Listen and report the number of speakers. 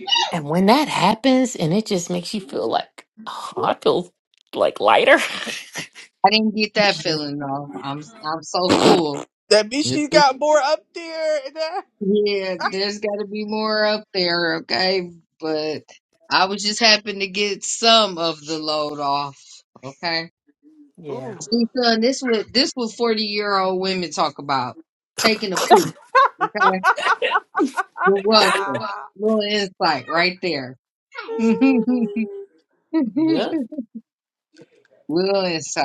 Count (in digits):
3